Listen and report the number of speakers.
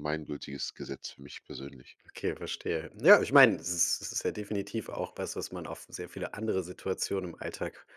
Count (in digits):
2